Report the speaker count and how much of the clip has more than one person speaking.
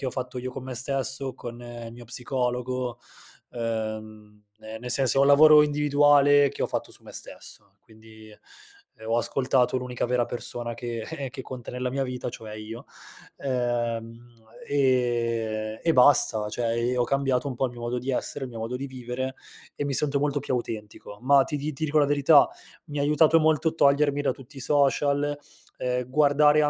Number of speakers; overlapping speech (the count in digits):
1, no overlap